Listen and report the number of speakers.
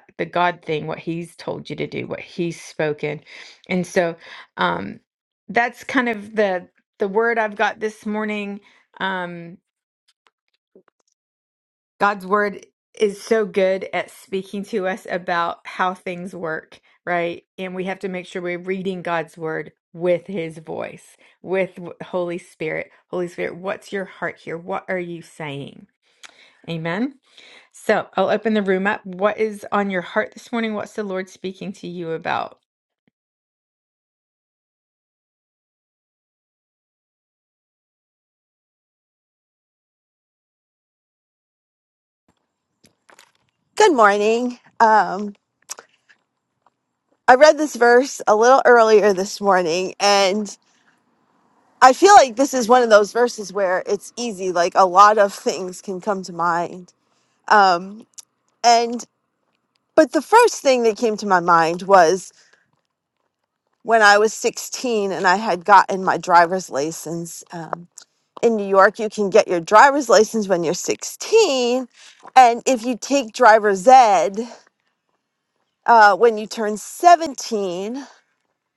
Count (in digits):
2